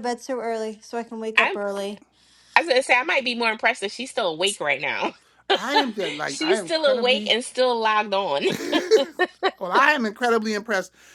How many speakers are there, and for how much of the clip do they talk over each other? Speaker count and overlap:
three, about 12%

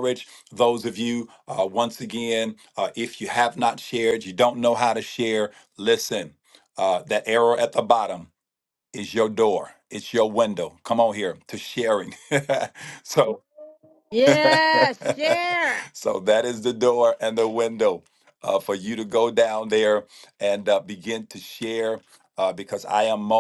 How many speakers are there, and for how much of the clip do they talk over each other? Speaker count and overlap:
two, no overlap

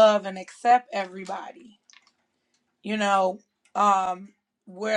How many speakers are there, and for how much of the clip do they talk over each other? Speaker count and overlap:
one, no overlap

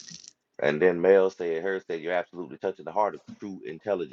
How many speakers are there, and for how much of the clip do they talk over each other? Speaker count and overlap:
one, no overlap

